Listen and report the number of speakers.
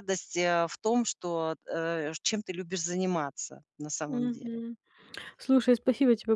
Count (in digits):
2